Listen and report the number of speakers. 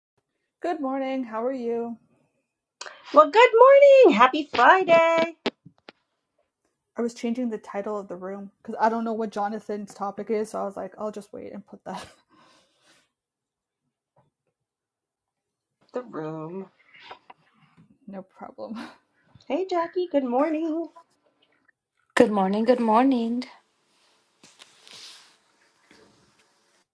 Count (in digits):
3